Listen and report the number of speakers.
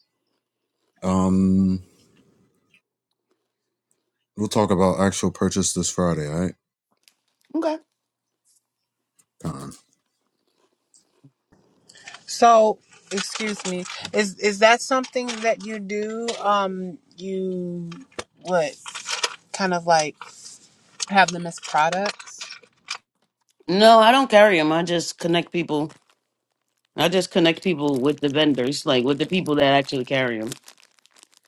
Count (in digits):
3